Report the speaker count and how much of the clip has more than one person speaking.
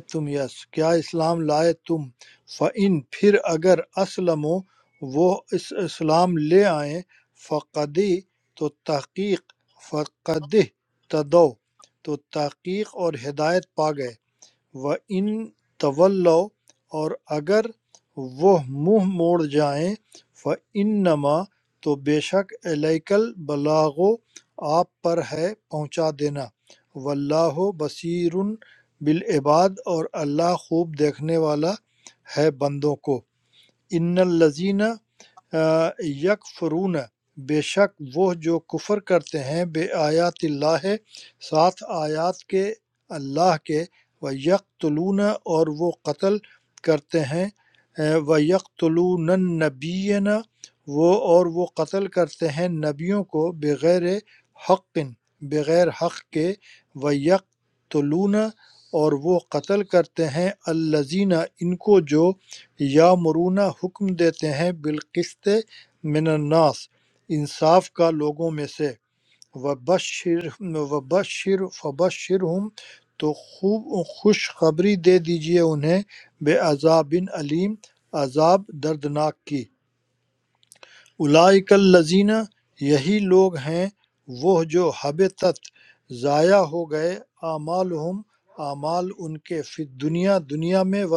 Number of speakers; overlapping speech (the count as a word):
one, no overlap